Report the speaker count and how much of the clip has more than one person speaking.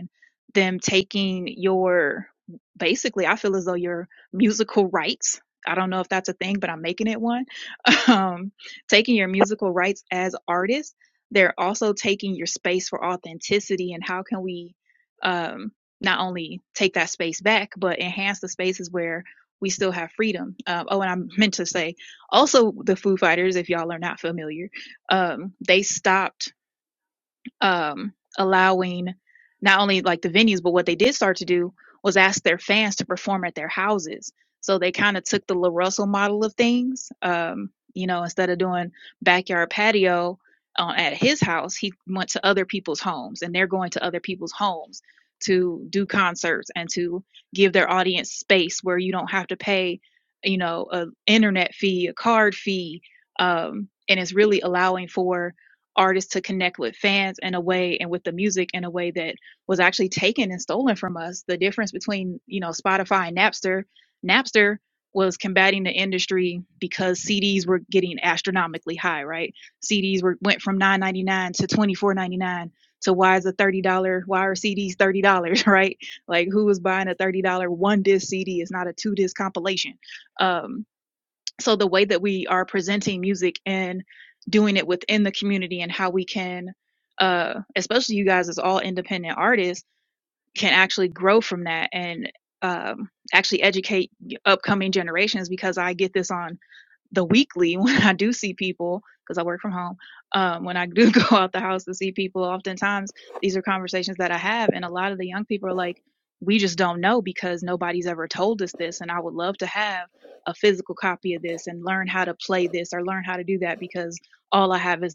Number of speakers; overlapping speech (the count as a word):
one, no overlap